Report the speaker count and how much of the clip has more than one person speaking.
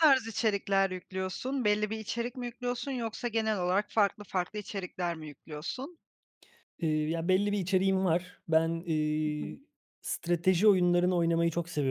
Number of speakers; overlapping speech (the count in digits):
2, about 2%